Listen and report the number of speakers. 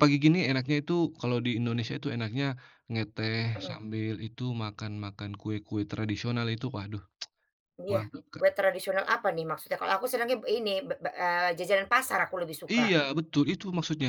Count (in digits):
2